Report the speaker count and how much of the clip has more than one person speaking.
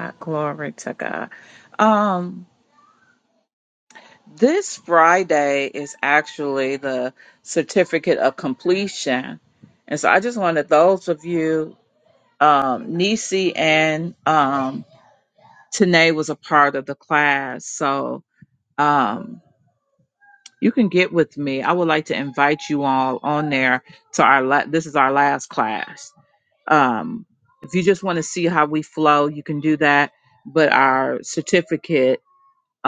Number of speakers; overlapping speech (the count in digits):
1, no overlap